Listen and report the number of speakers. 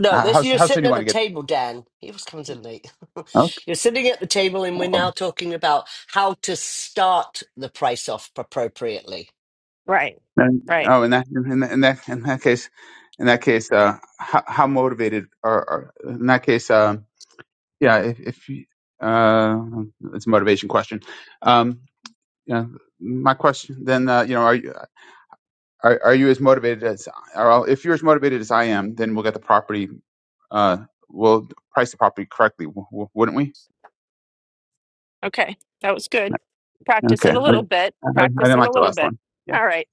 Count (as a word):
three